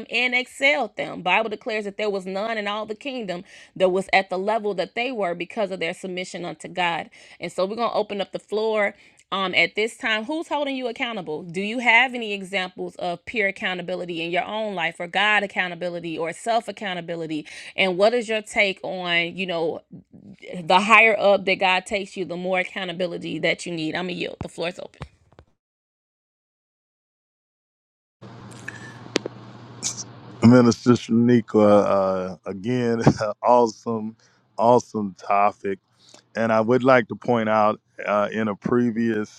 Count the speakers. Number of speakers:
two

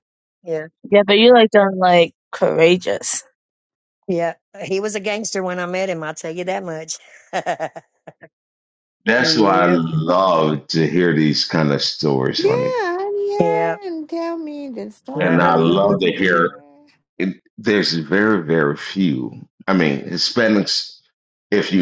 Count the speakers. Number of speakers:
four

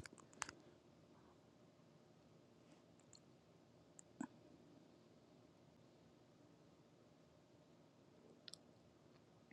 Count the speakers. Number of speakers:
zero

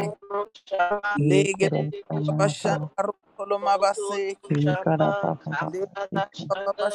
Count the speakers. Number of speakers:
three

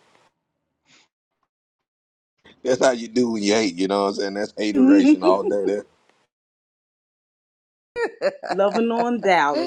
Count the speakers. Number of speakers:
two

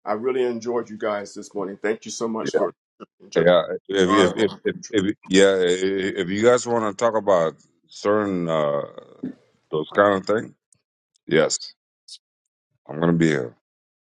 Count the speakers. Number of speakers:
two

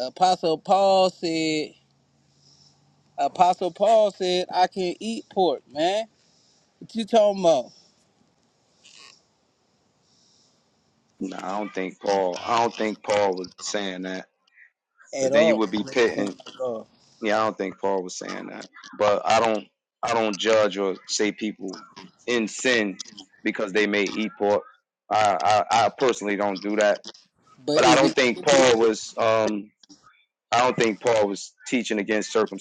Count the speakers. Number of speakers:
two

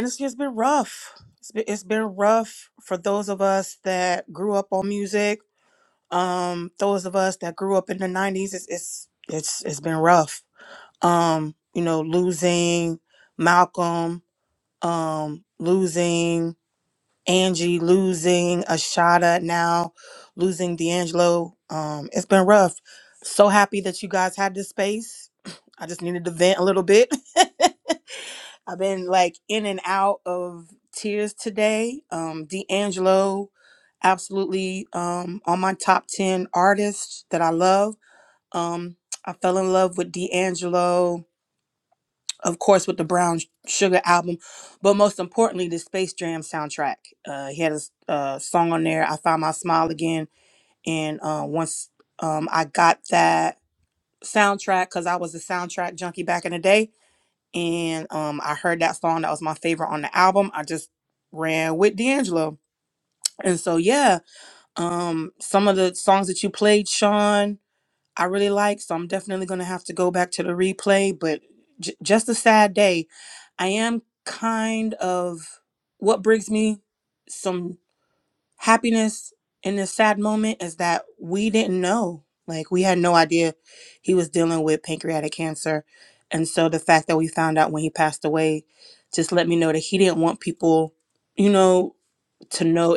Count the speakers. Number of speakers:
one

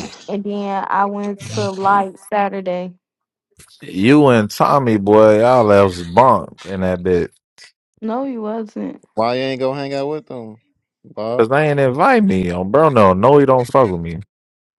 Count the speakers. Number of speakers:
three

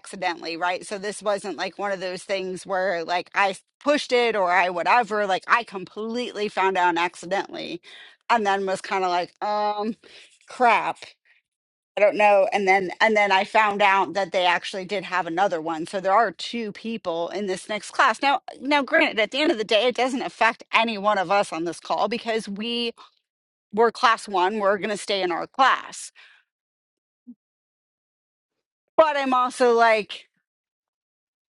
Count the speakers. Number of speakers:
one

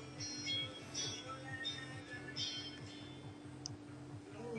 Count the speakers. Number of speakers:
zero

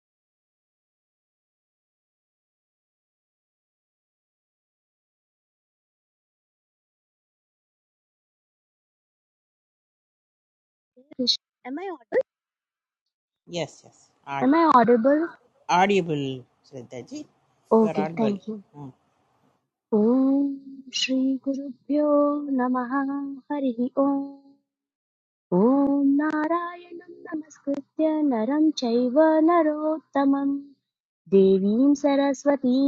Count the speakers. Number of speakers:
two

